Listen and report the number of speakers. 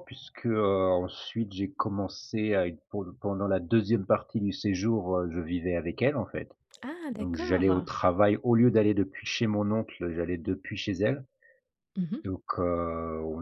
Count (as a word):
two